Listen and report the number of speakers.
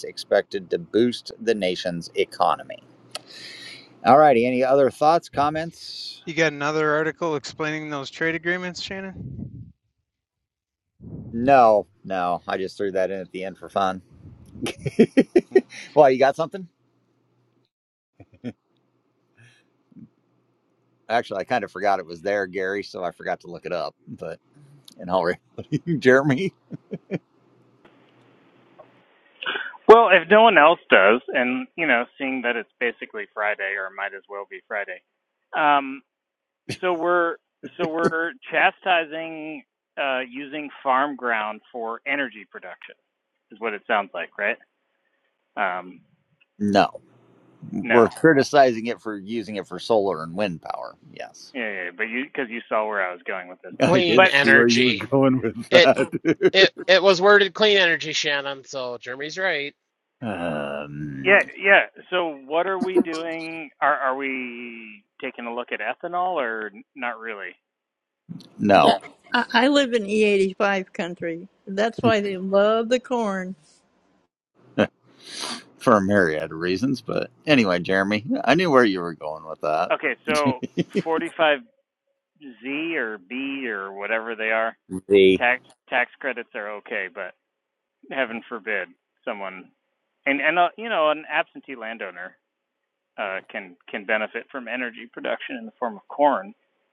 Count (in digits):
5